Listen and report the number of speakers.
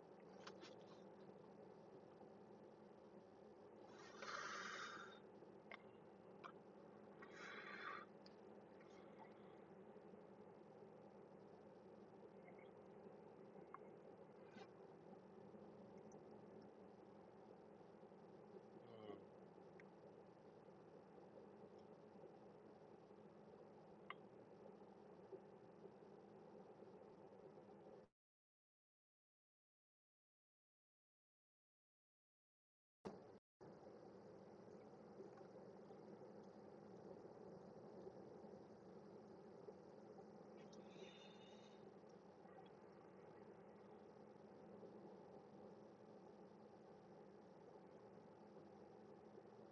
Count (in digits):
0